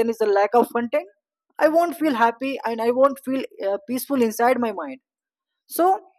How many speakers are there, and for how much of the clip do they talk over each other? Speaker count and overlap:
one, no overlap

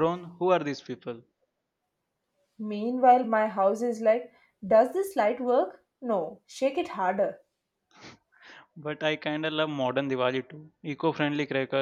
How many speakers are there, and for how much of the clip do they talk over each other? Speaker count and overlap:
two, no overlap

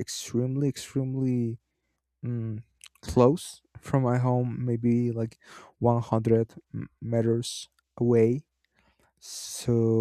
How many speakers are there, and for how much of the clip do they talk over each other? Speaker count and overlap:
one, no overlap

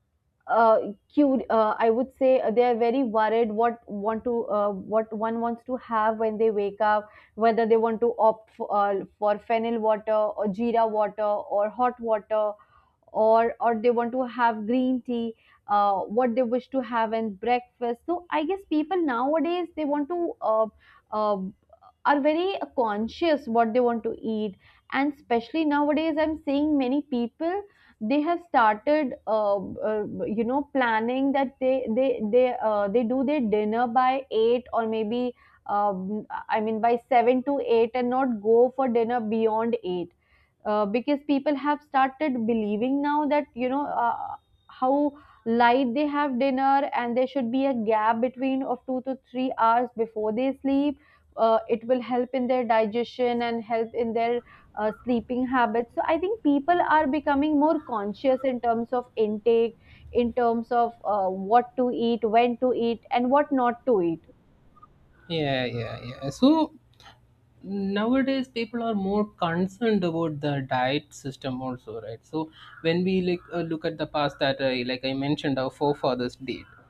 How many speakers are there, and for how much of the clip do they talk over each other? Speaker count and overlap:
two, no overlap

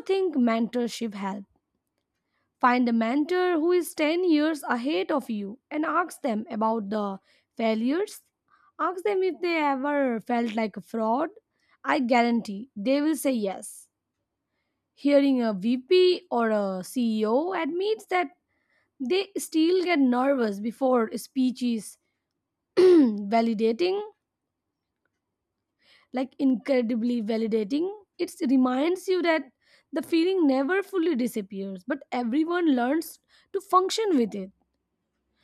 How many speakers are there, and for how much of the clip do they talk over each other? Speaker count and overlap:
one, no overlap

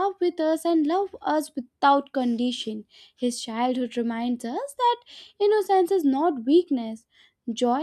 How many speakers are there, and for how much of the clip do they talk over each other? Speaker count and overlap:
one, no overlap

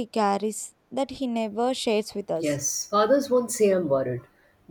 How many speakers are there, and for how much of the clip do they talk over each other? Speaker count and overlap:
two, about 1%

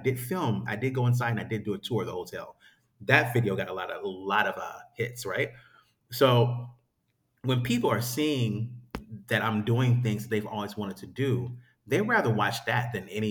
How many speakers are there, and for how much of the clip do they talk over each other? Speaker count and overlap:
one, no overlap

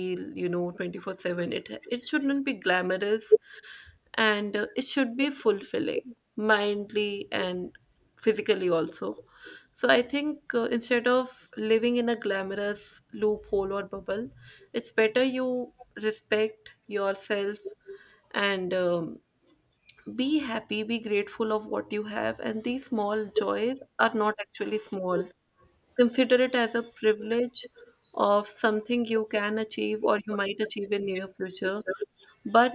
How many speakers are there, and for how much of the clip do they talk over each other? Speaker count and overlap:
one, no overlap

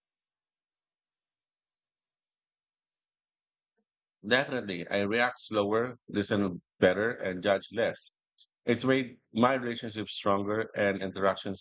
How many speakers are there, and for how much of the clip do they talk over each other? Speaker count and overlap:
one, no overlap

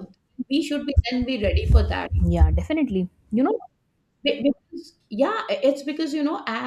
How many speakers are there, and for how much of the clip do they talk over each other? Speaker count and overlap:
two, no overlap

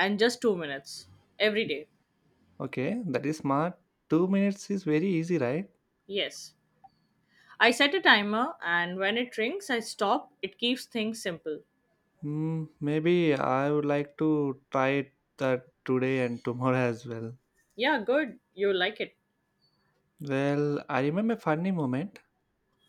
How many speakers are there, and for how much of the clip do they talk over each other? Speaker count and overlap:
two, no overlap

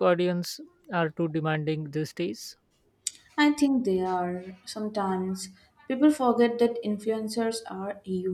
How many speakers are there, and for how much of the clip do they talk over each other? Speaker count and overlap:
two, no overlap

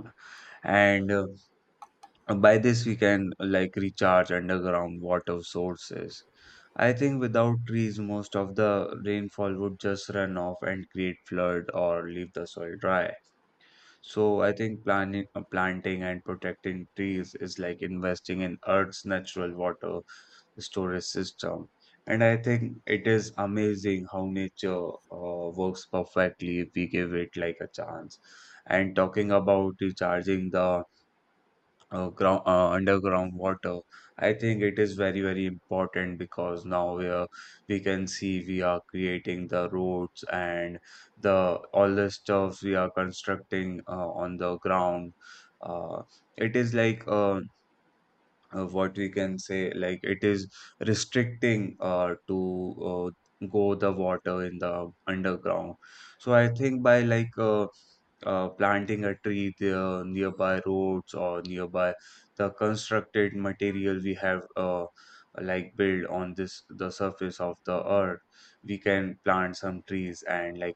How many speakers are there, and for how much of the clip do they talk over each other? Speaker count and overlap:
one, no overlap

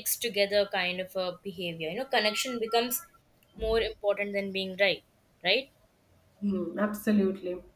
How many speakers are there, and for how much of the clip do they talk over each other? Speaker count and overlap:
two, no overlap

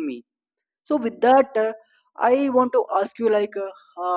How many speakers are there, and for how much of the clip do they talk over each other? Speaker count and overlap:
one, no overlap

